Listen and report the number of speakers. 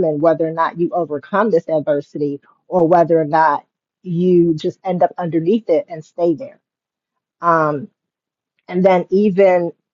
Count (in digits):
1